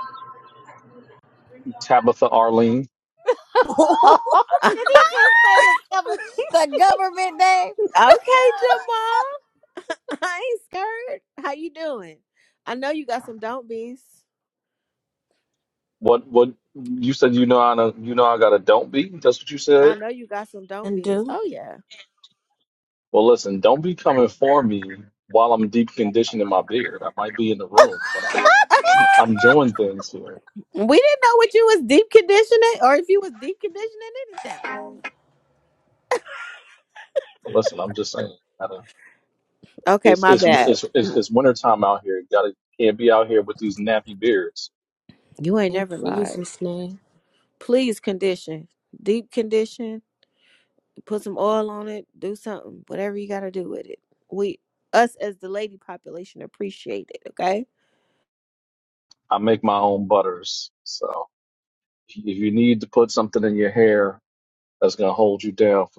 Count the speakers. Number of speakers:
4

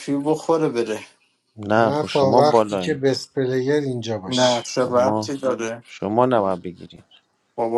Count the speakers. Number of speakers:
3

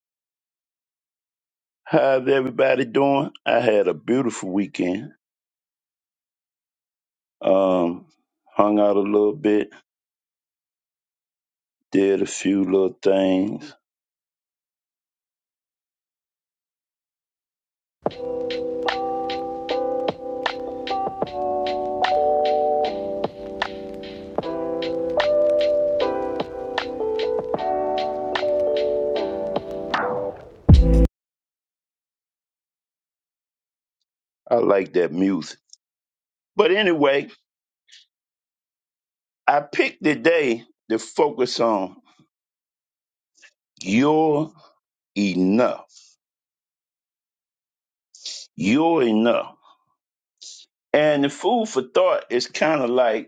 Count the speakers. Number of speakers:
1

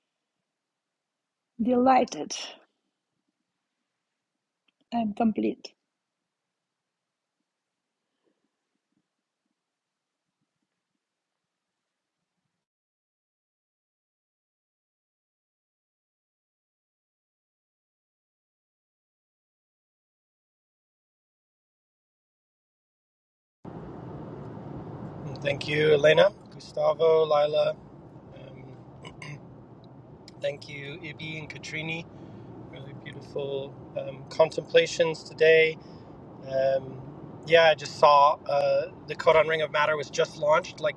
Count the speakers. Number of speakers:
2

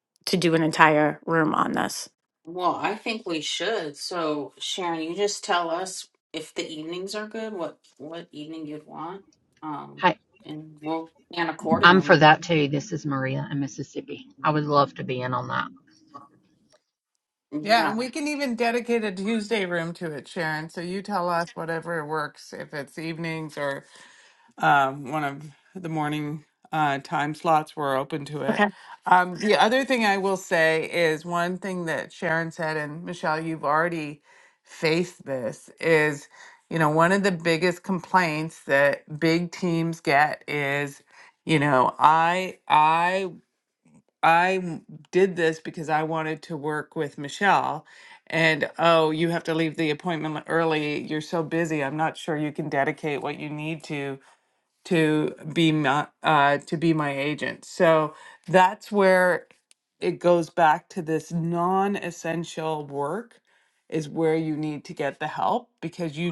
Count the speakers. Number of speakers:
4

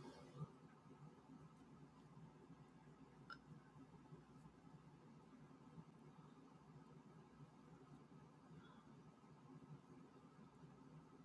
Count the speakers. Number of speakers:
0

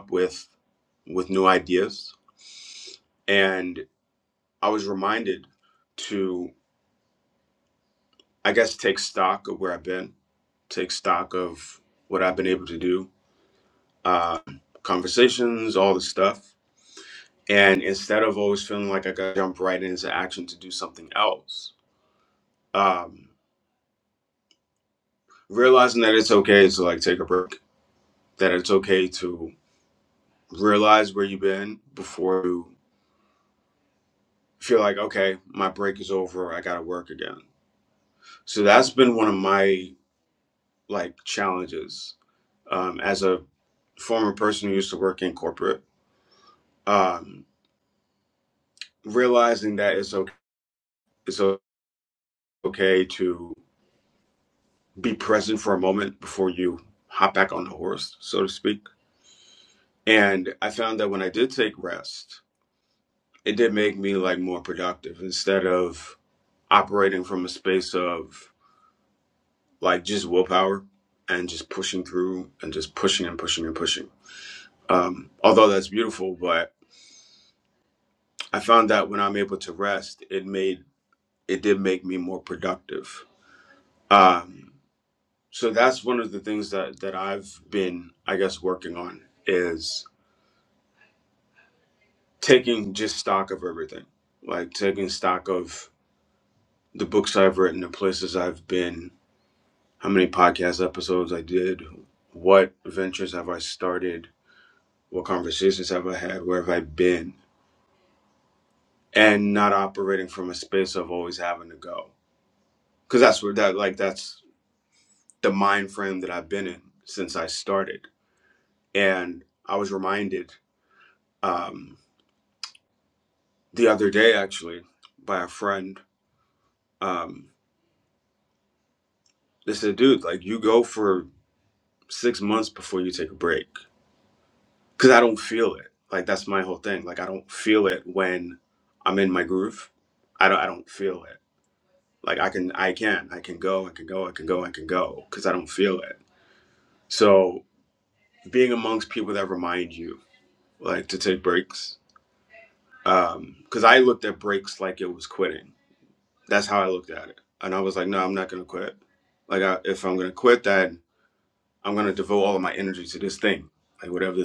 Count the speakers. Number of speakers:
1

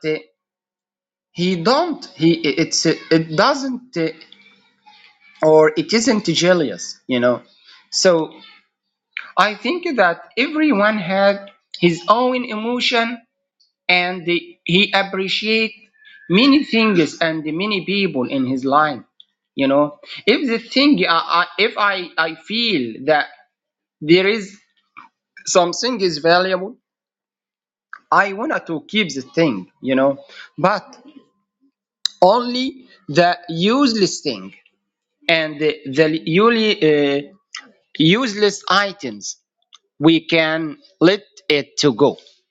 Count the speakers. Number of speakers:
1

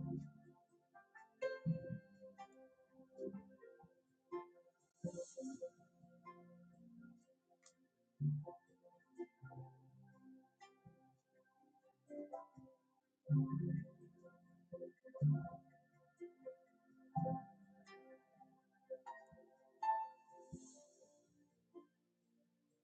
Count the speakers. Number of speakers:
0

